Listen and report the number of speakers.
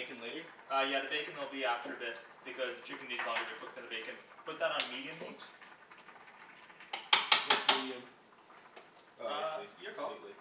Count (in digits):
2